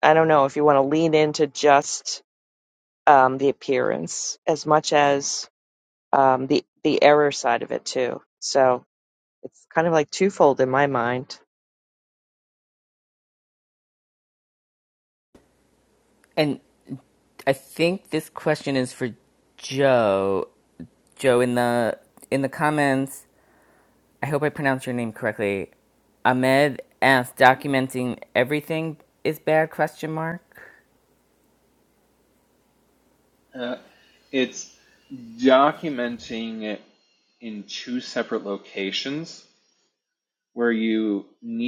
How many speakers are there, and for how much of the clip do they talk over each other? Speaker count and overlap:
3, no overlap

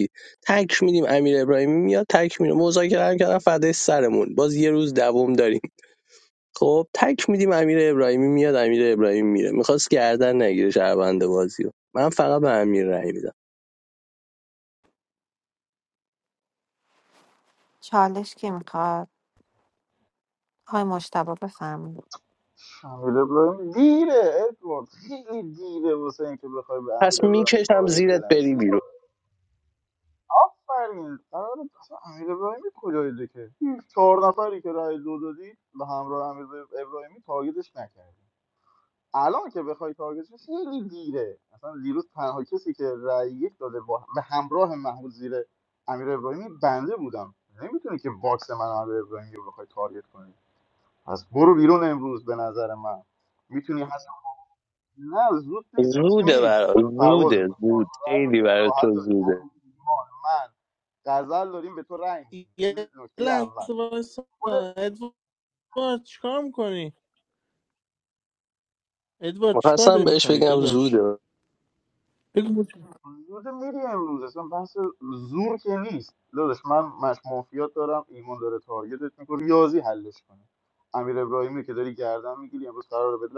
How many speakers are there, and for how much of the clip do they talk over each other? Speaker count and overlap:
4, about 7%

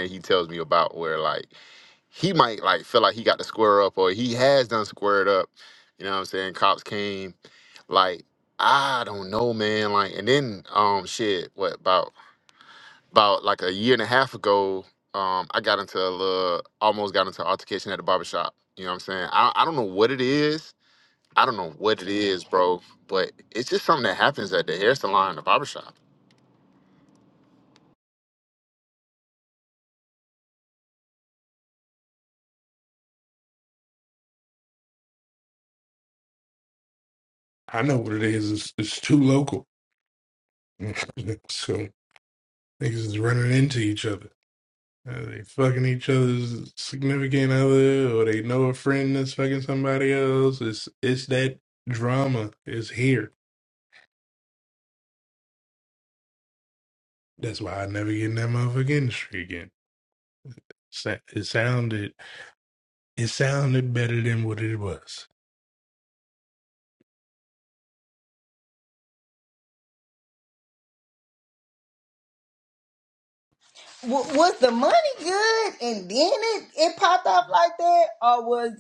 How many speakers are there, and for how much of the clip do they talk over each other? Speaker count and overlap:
3, no overlap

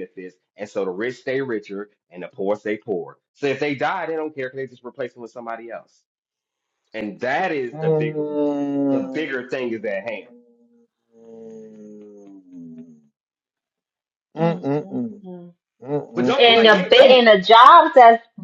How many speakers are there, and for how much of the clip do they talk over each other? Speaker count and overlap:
3, about 10%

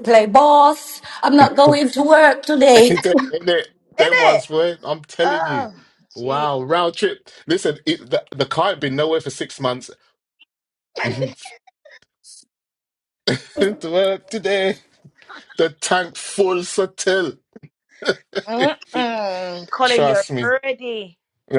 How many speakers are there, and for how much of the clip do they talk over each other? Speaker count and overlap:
3, about 9%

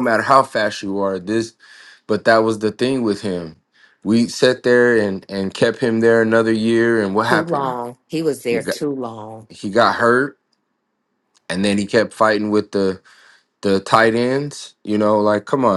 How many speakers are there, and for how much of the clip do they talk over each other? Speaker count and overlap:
2, about 4%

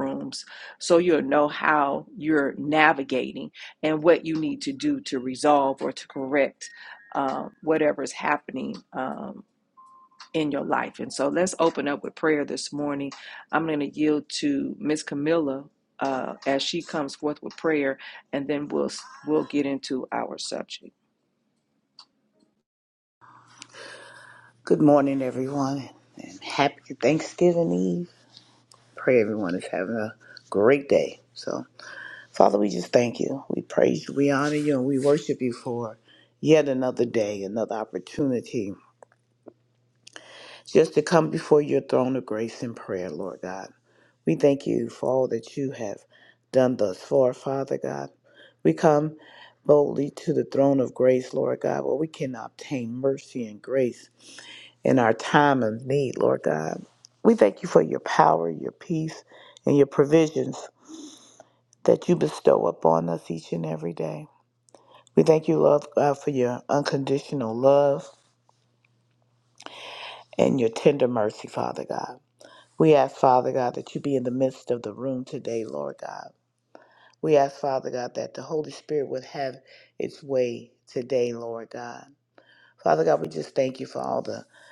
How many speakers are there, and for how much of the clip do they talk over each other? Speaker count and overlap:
2, no overlap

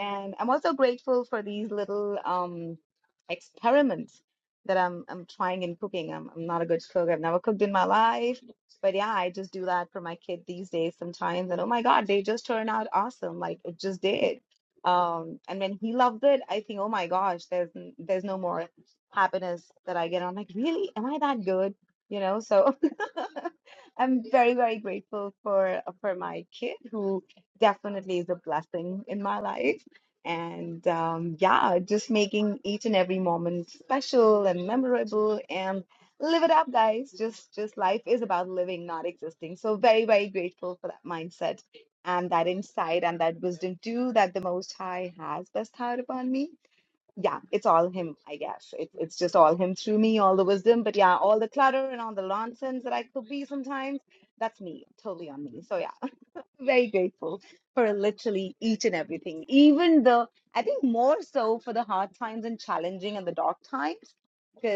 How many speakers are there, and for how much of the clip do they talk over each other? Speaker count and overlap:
1, no overlap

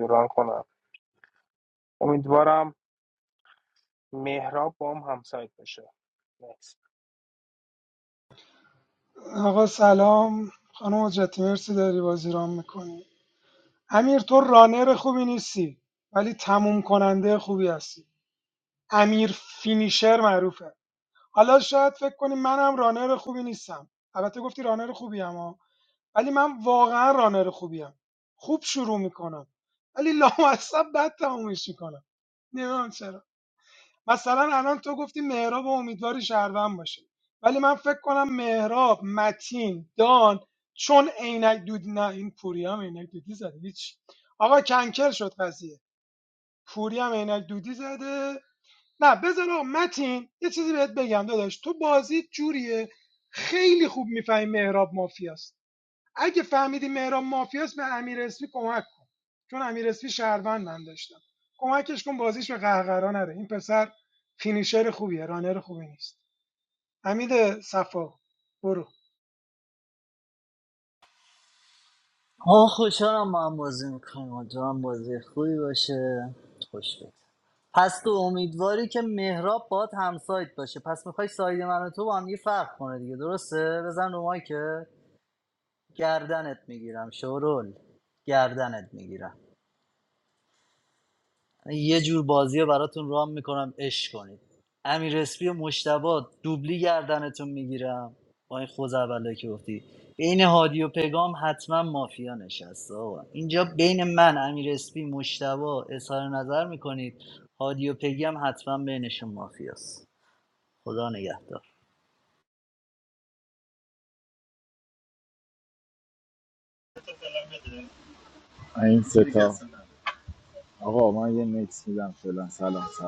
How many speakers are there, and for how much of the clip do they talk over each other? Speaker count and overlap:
4, no overlap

